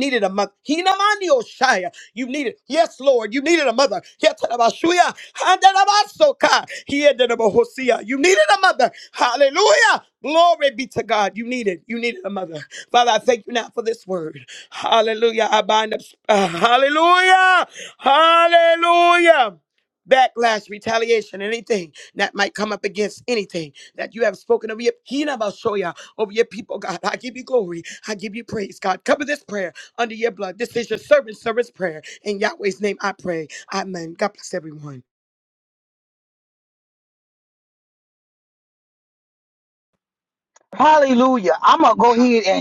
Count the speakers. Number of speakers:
two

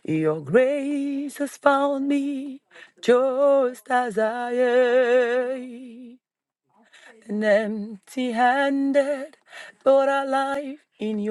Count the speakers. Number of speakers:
one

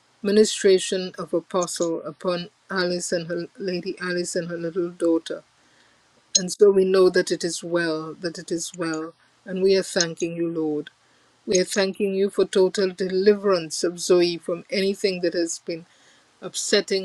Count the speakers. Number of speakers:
one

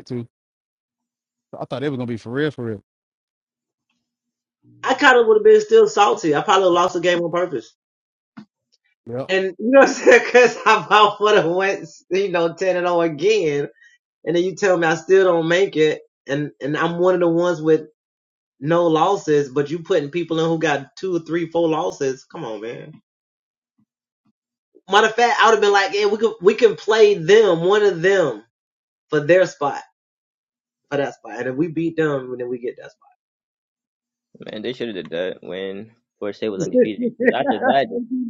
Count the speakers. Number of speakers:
three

